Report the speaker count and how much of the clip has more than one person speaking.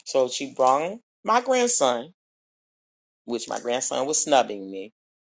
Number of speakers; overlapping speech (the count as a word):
one, no overlap